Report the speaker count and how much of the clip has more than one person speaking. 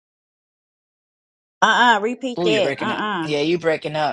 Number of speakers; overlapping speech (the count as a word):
two, about 23%